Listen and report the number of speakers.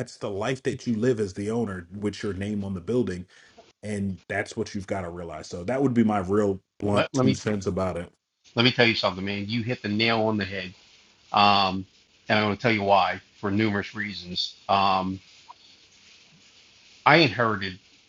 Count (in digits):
2